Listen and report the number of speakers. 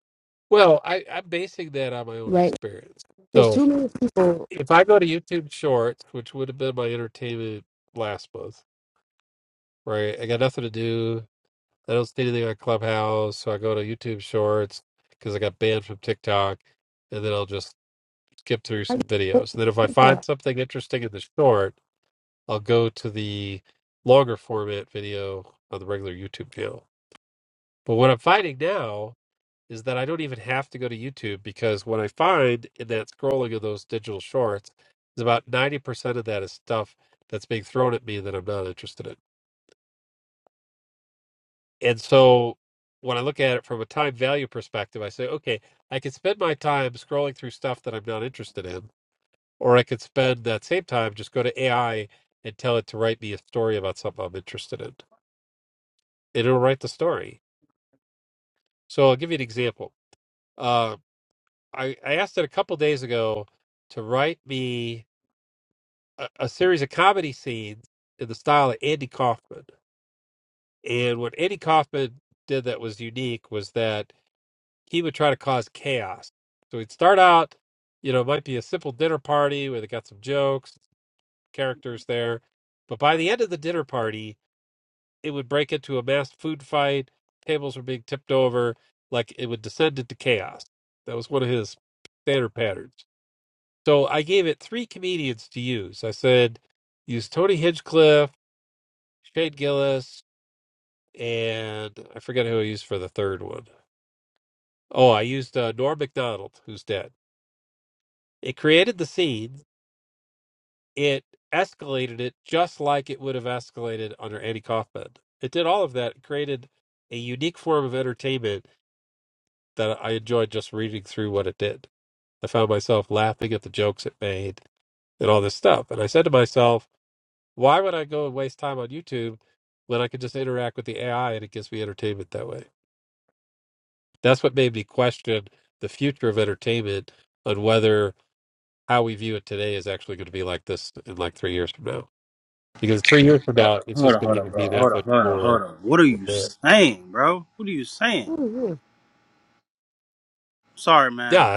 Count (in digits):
3